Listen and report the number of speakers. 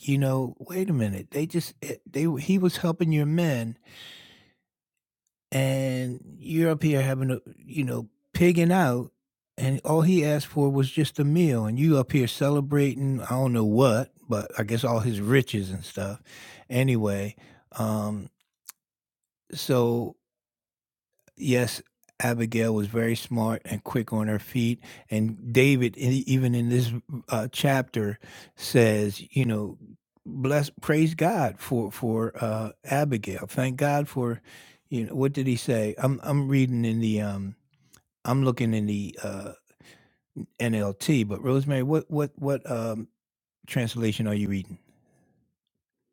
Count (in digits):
1